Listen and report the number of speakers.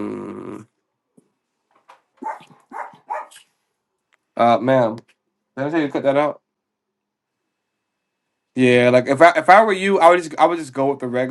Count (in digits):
1